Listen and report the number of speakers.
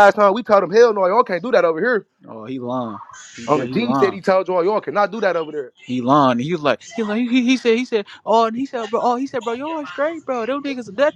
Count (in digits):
2